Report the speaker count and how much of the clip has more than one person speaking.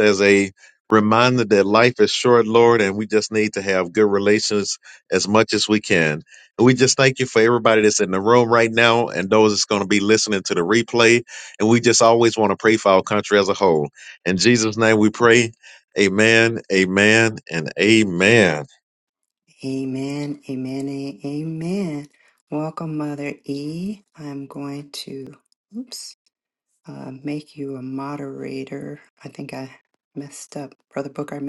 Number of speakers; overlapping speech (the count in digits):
2, no overlap